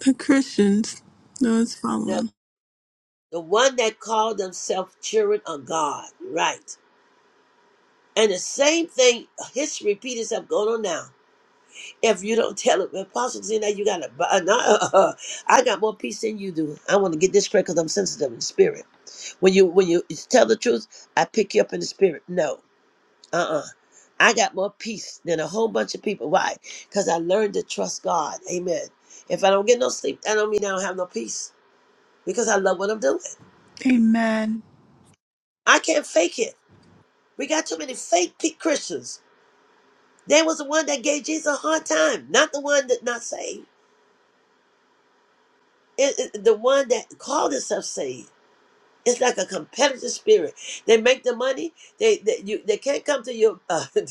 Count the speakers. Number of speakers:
two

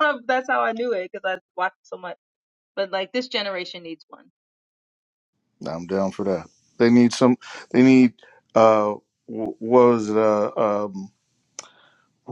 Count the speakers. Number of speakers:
two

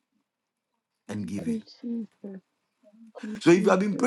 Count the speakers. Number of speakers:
two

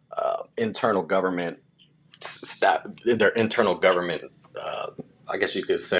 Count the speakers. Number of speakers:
one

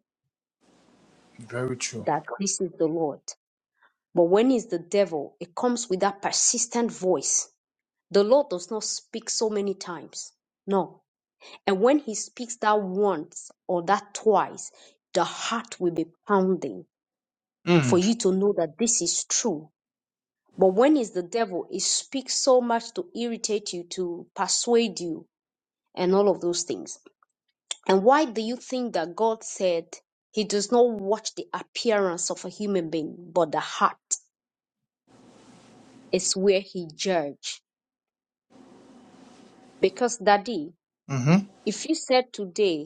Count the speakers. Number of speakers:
two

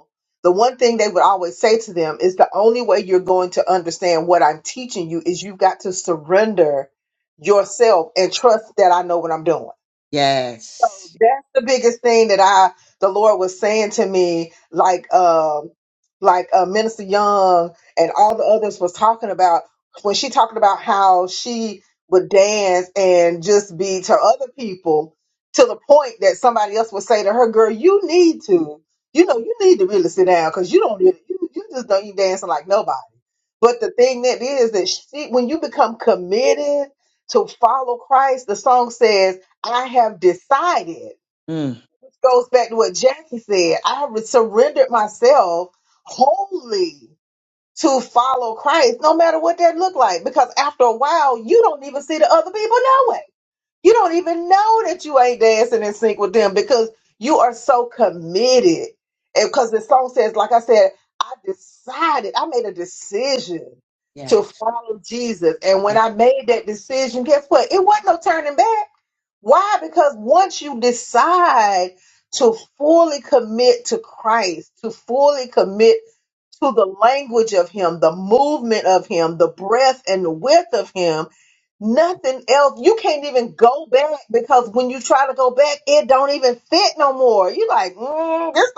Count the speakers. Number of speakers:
two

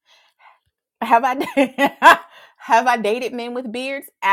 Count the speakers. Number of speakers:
one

